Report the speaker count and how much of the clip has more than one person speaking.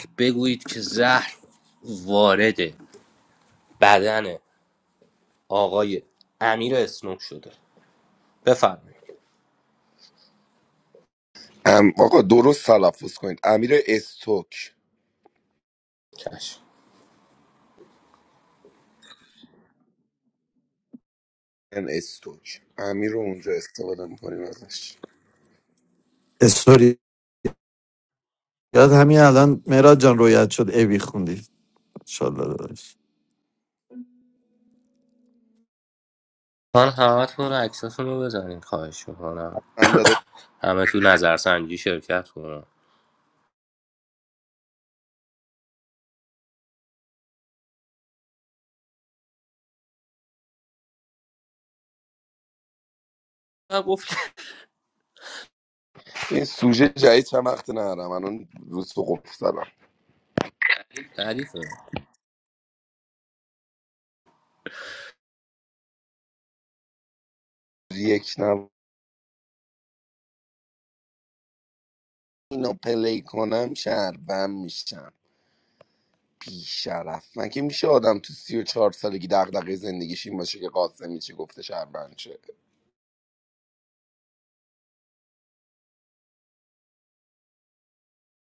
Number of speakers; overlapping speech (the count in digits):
3, no overlap